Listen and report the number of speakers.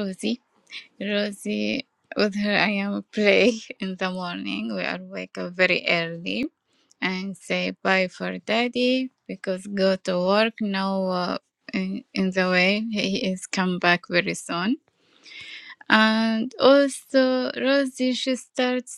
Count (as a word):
one